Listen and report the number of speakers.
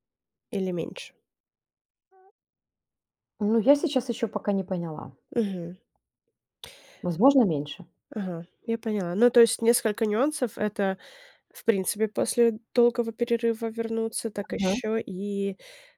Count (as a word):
two